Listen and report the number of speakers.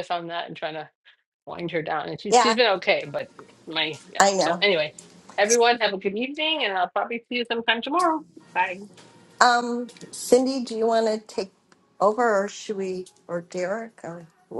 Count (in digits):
2